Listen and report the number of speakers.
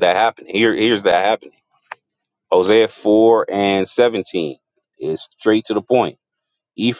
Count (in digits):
1